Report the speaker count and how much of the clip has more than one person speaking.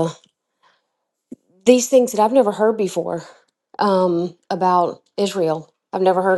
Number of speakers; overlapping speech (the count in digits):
1, no overlap